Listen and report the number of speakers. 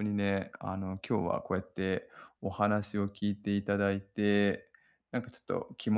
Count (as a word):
one